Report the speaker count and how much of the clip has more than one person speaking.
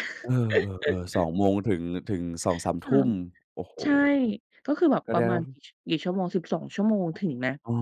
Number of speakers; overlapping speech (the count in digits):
2, about 9%